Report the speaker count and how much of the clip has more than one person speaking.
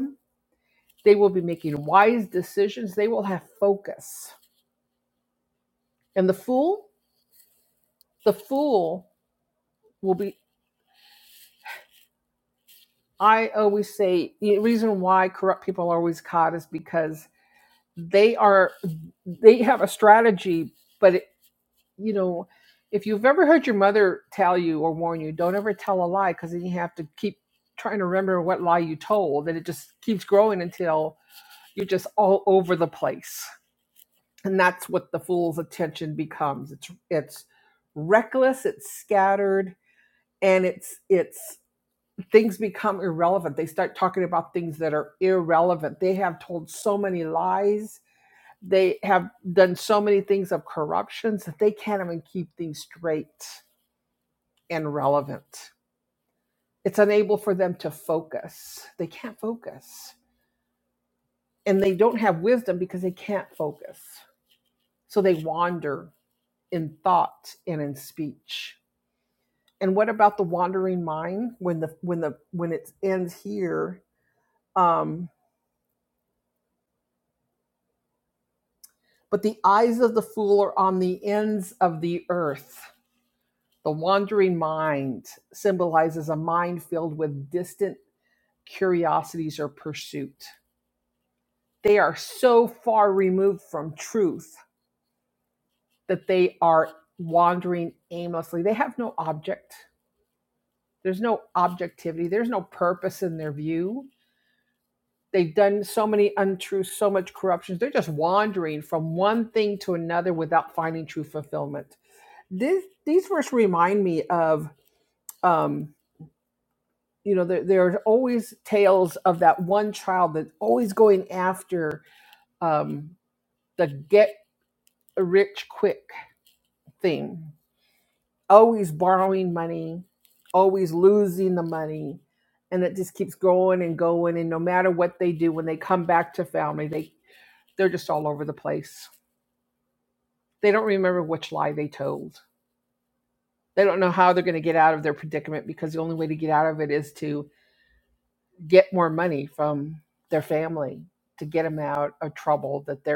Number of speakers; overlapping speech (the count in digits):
1, no overlap